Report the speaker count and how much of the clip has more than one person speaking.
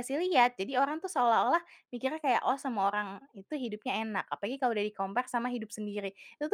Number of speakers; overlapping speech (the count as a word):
one, no overlap